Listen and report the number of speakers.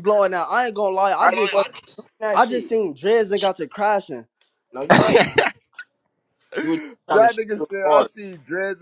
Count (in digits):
3